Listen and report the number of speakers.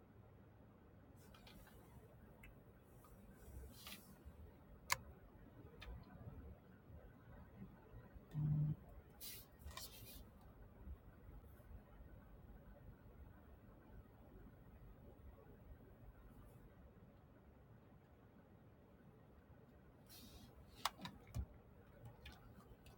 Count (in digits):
0